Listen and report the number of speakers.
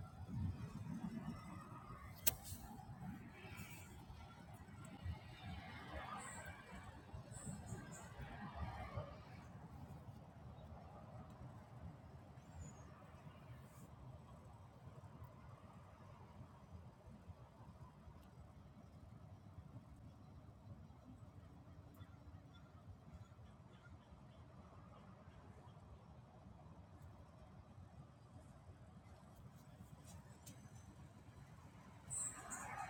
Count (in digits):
0